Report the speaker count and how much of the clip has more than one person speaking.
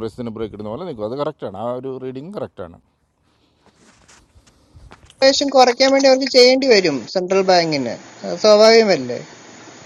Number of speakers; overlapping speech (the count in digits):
2, no overlap